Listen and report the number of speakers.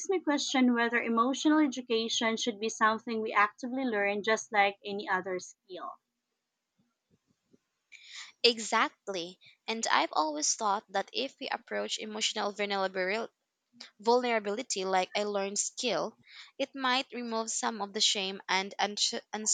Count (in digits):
2